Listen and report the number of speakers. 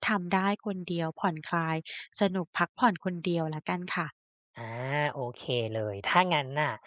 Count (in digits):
2